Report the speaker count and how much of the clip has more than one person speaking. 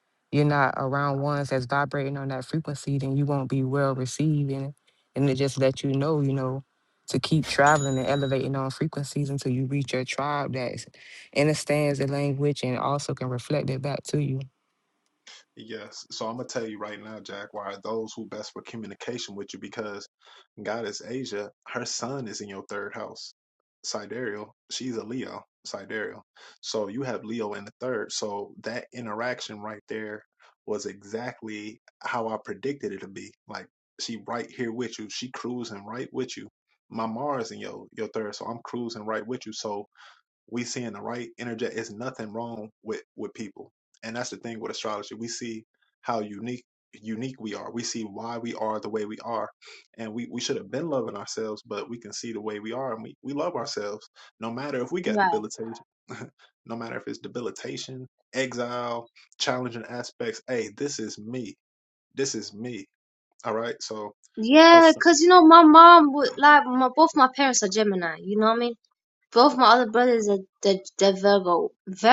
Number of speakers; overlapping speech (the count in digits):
3, about 1%